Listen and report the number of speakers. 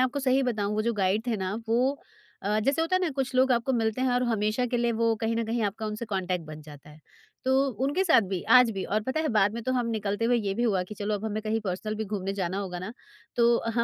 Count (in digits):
1